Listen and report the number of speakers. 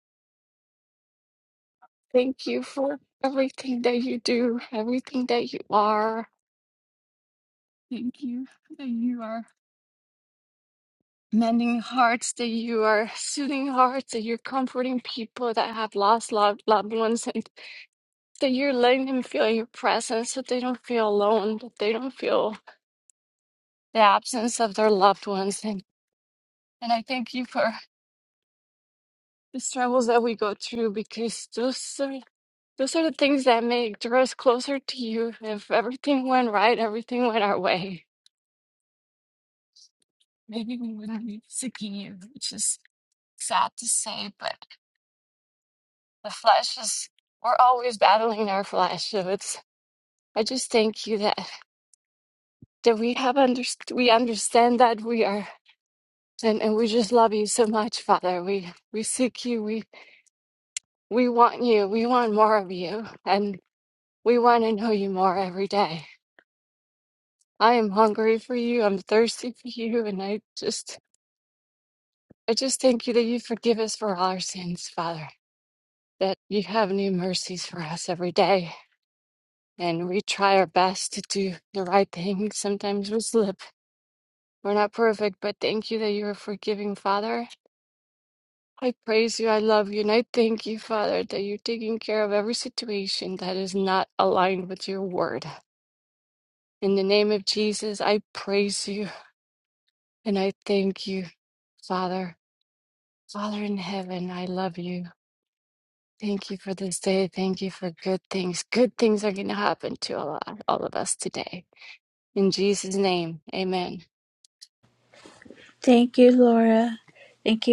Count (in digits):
2